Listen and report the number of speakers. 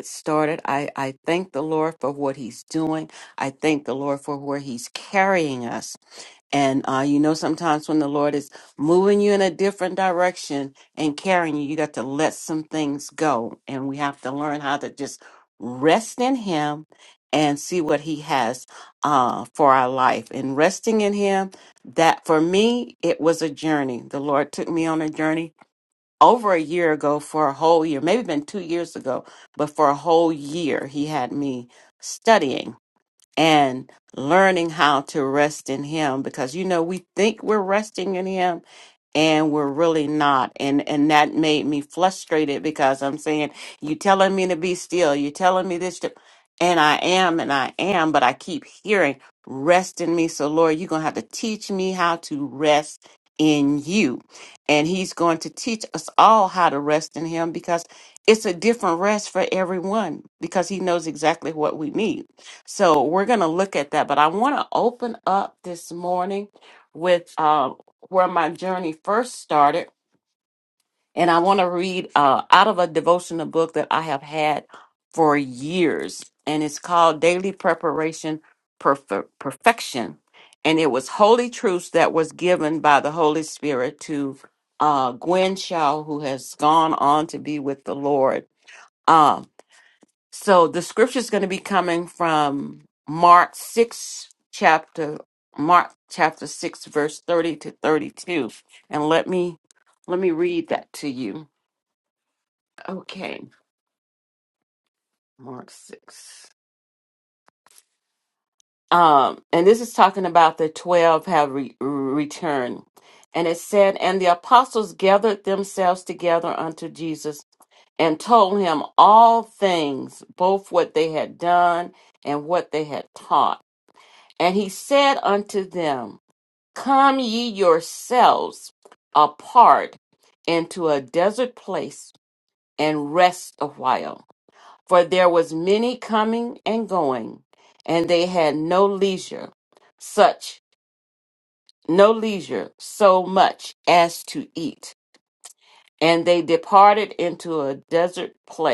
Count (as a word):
one